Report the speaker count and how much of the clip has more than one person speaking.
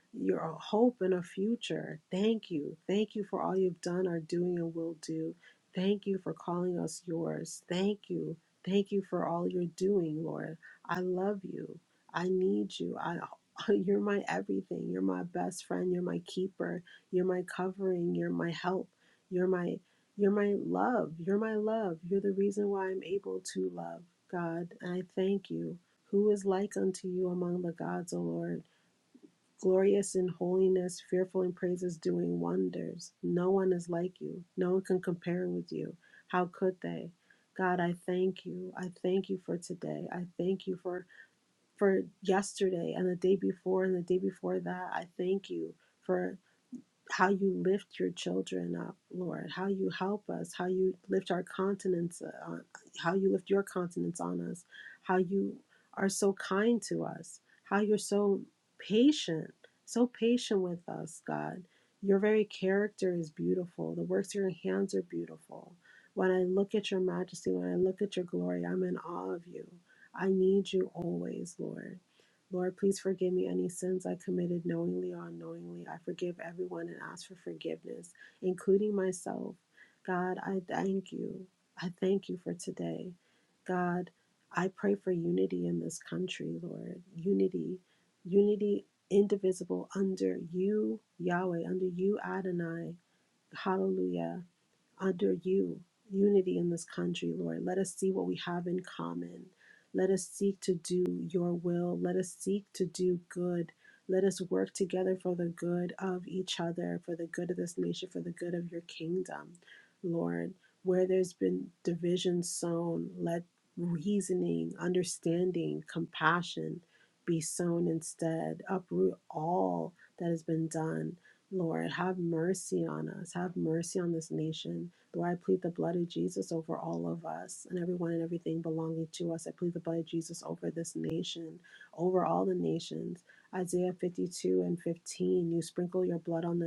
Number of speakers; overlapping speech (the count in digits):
1, no overlap